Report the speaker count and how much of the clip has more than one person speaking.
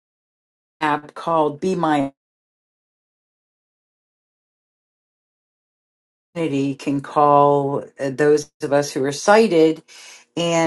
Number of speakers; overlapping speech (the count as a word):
one, no overlap